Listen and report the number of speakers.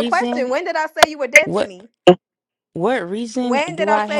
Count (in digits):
2